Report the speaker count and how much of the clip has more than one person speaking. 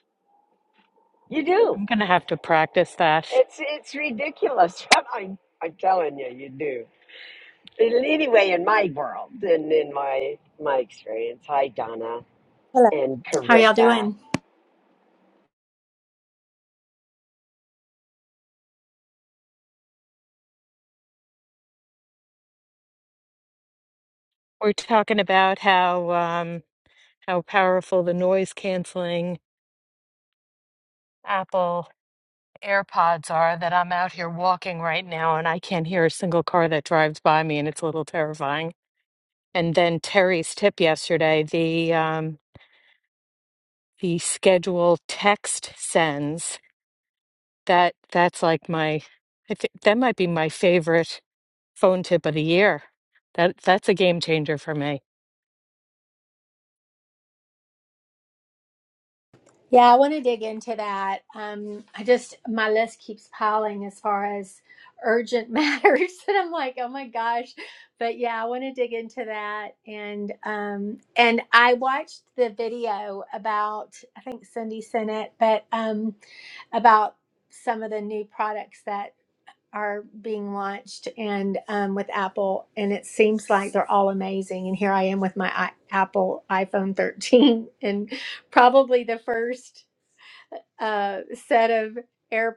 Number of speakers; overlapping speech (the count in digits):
3, about 1%